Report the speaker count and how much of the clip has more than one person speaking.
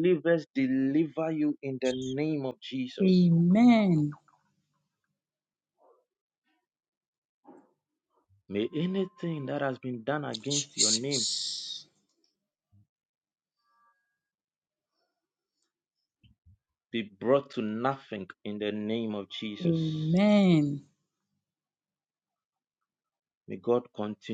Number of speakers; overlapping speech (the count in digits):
2, about 5%